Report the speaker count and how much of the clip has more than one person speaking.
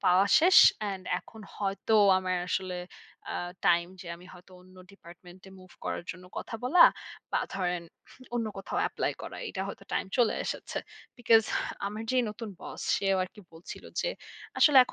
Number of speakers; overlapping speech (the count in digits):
1, no overlap